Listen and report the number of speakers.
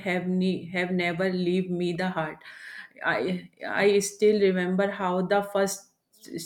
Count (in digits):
1